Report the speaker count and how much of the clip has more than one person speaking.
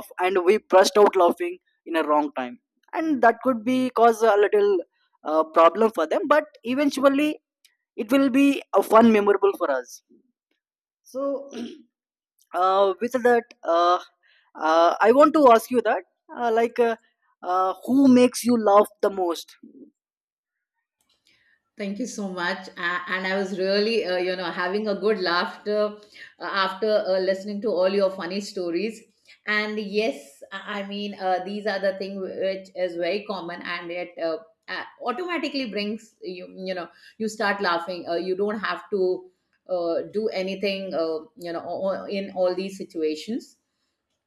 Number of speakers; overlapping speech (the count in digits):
2, no overlap